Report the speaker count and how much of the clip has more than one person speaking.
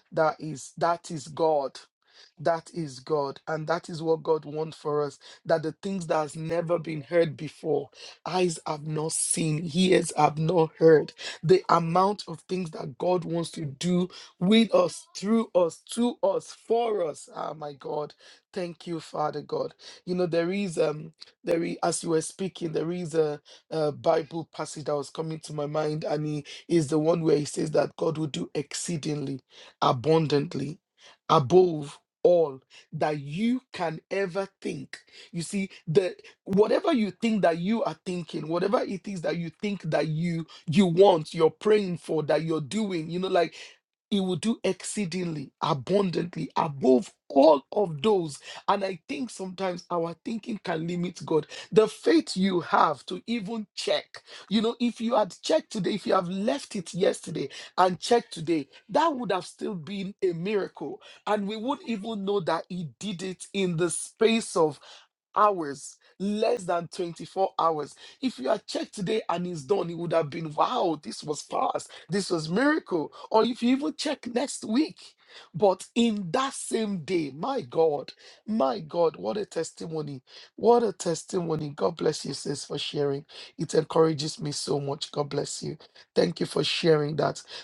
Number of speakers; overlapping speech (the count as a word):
one, no overlap